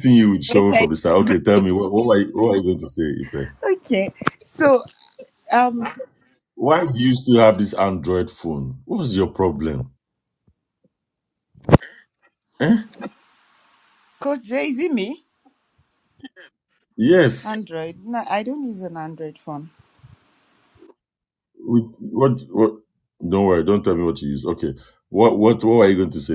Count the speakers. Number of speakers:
2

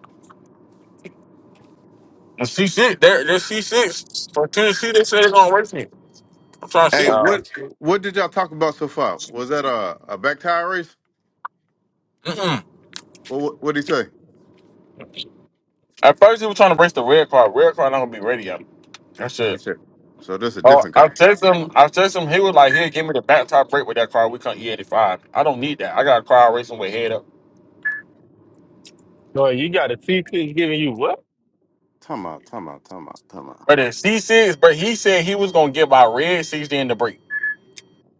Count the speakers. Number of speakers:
3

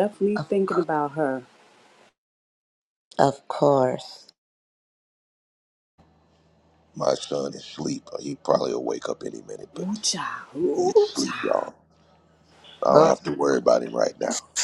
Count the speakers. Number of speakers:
3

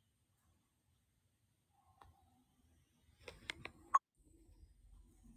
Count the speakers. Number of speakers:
0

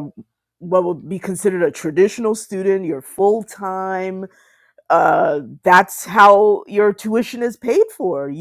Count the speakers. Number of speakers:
1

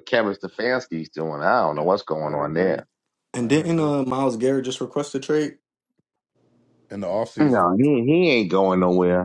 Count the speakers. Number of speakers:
3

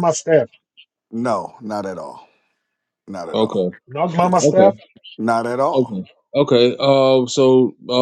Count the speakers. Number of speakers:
3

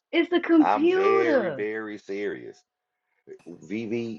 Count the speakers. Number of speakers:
2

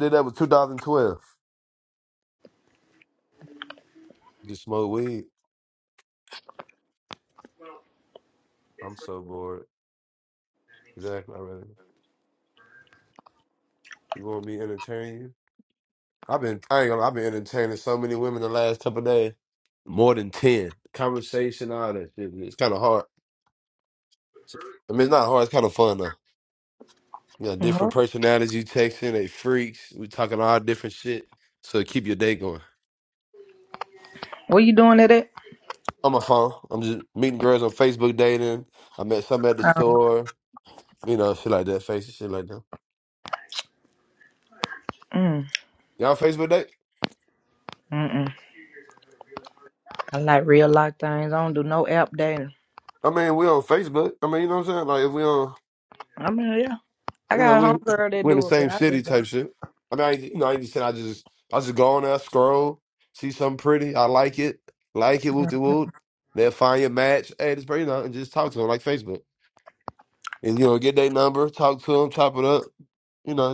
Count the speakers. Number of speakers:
2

